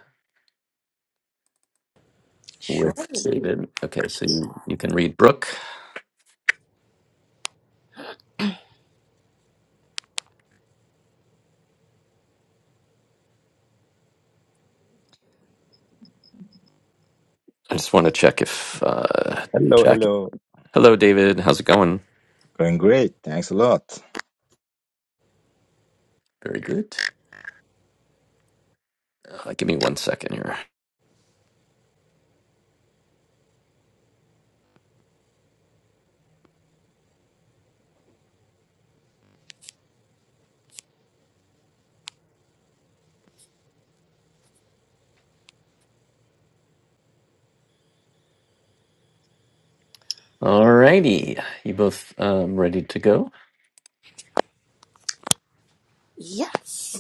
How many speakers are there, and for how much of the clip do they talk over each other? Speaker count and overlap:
3, about 2%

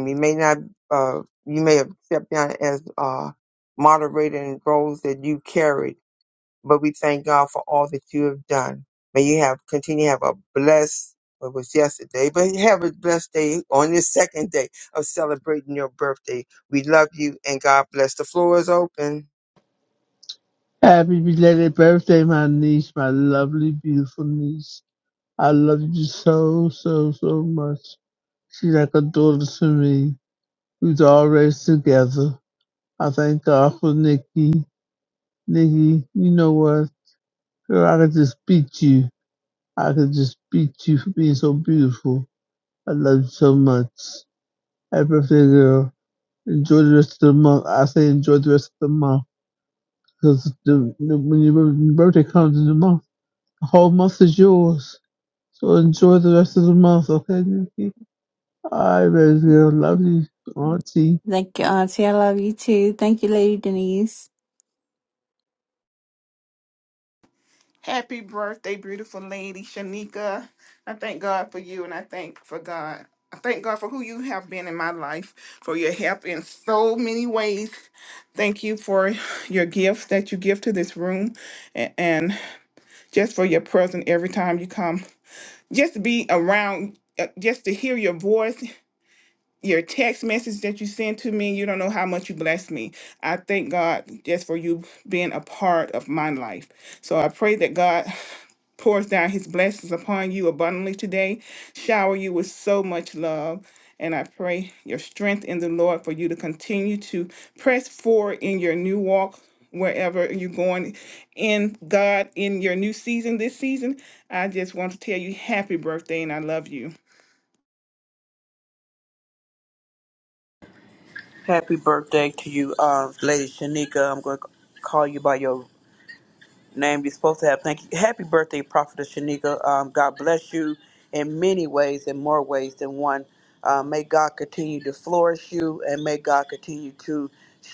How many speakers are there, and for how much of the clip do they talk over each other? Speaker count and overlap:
5, no overlap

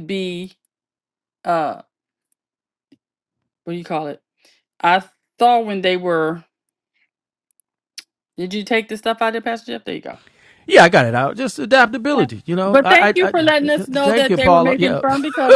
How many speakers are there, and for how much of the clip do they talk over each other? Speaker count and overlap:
2, about 13%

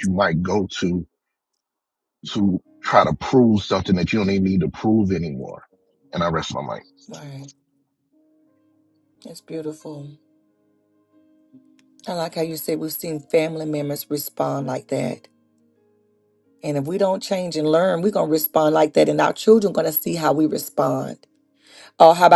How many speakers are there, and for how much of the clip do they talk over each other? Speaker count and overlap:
2, no overlap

